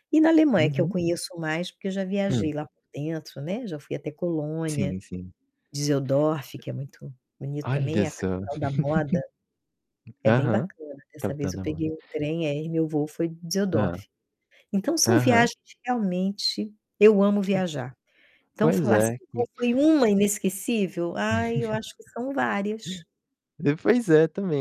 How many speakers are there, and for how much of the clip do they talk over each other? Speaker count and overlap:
2, about 17%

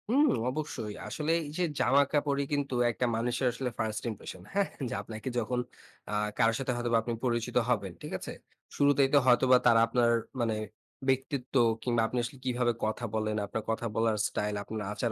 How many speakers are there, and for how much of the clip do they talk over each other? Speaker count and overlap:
1, no overlap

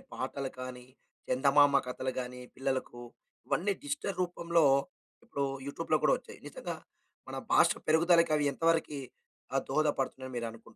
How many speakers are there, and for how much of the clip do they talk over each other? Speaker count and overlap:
1, no overlap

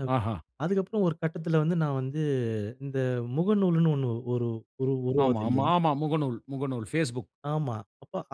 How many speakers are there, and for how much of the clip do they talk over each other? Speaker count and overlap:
2, about 6%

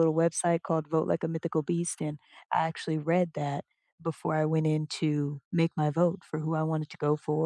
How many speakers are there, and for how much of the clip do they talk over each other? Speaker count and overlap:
1, no overlap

